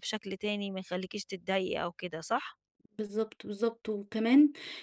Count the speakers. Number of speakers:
2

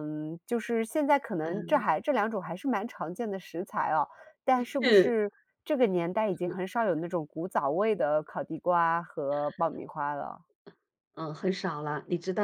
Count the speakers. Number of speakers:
2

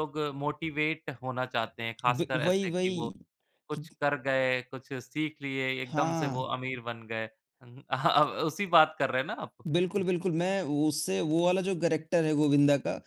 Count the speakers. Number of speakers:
2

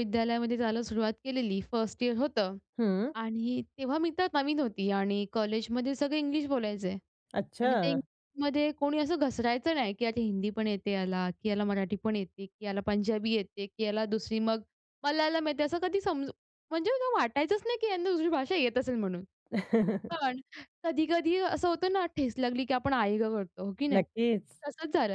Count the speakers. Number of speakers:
2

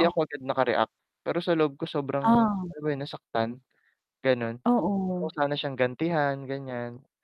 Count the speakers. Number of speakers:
2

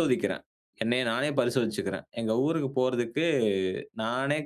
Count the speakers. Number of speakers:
1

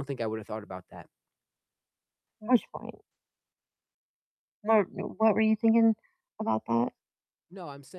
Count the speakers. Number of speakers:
2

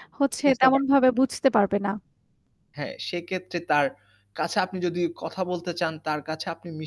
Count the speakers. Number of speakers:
2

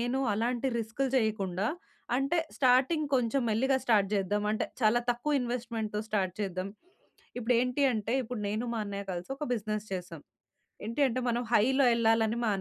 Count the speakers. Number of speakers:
1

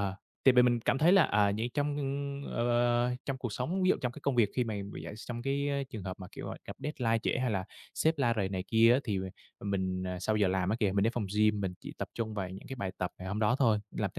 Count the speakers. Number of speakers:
1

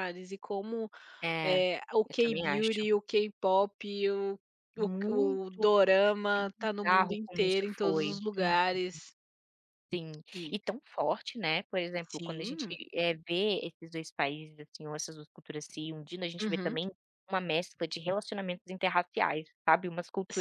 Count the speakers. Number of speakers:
2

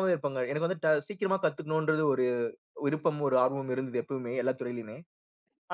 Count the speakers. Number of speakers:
1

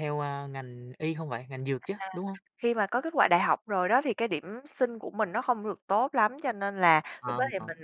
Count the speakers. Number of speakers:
2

